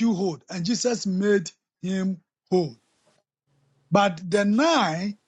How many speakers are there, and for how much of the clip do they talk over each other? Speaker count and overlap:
one, no overlap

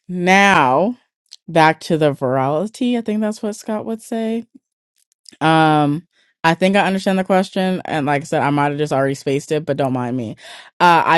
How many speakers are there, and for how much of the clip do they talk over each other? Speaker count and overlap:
one, no overlap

